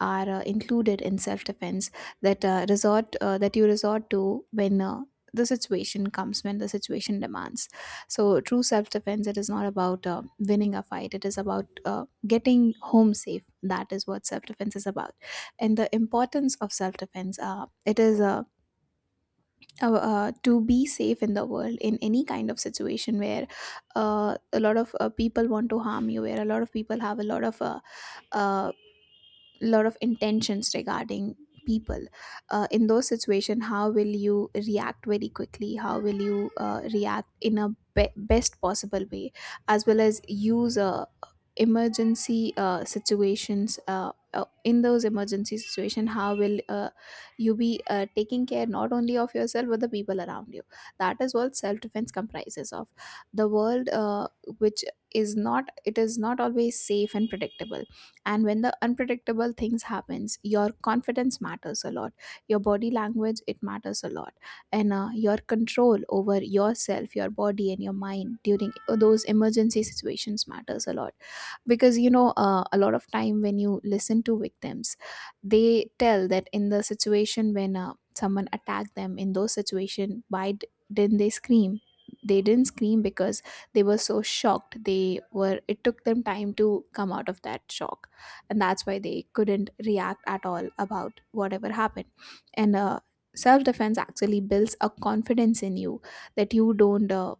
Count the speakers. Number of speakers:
1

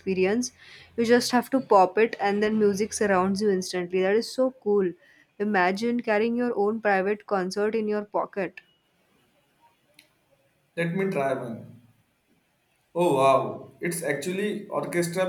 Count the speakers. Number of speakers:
2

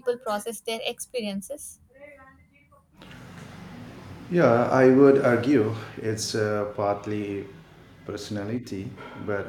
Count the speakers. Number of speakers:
2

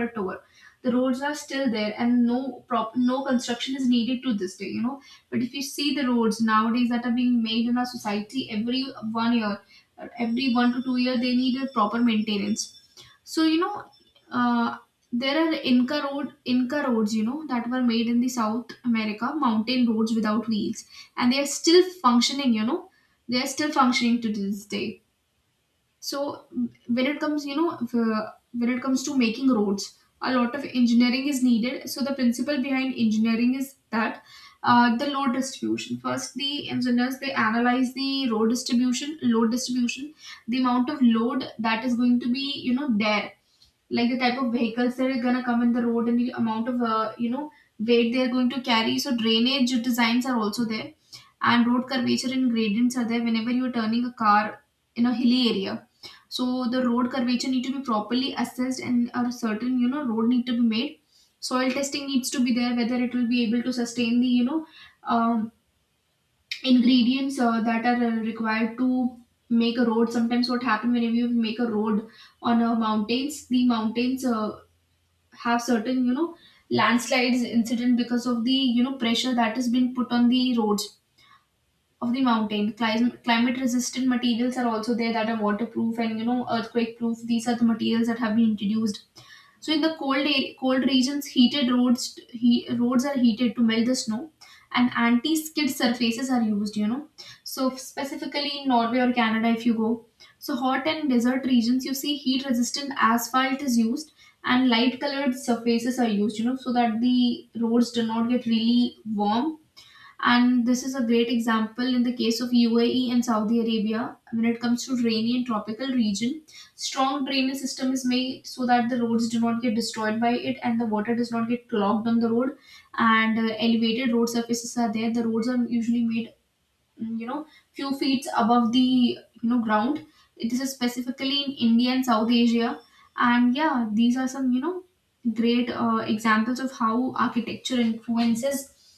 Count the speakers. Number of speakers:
1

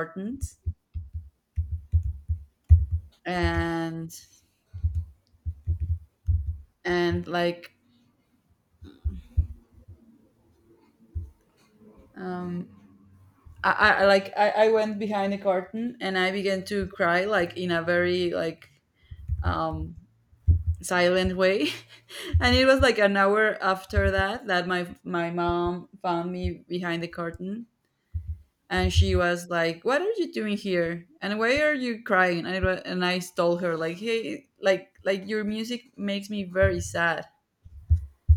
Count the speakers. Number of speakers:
1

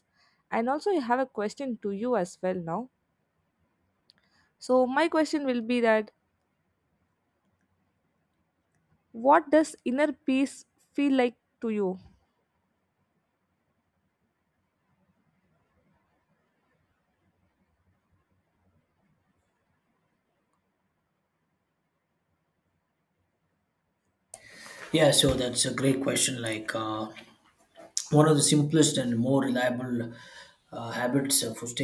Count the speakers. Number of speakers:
2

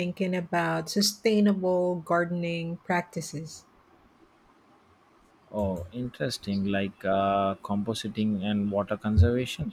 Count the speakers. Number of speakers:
2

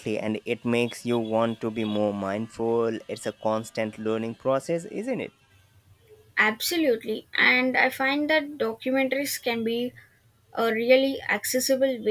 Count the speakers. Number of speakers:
2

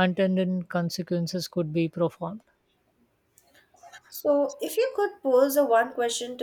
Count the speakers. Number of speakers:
2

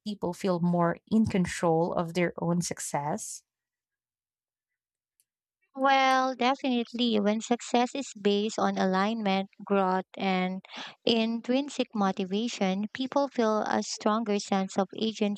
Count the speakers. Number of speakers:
2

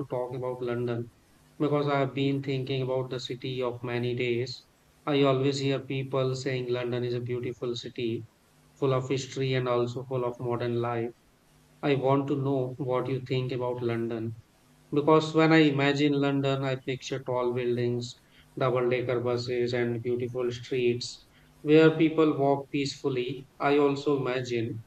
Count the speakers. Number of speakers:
1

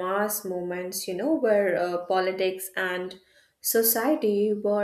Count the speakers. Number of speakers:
1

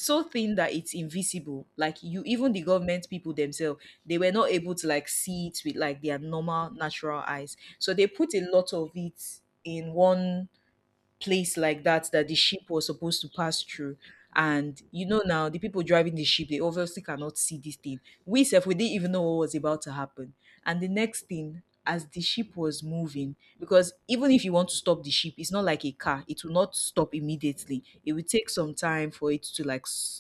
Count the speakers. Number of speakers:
1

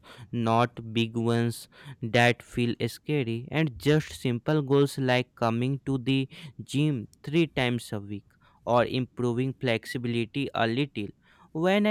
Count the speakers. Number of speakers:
1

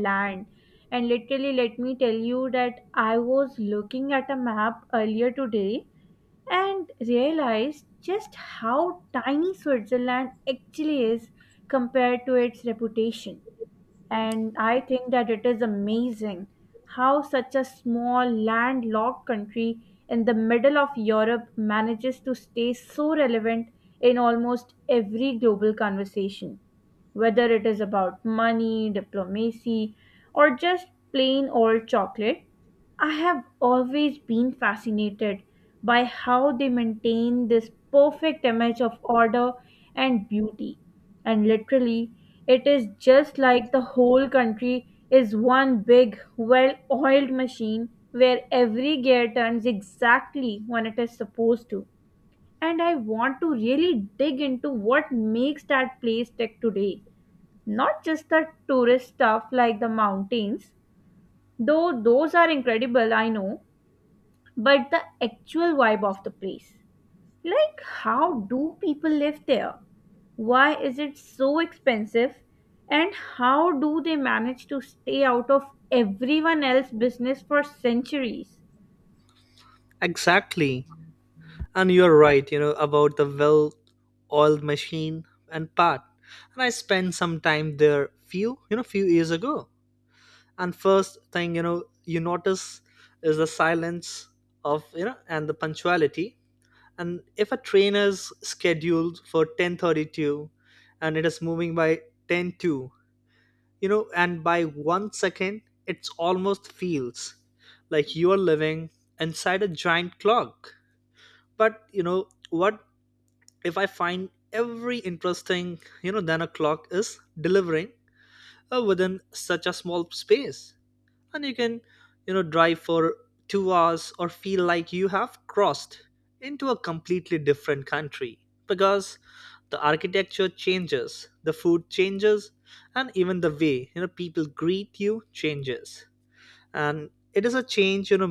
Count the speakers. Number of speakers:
2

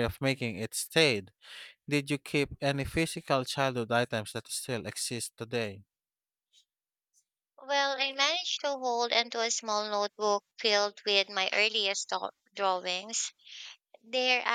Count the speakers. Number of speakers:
2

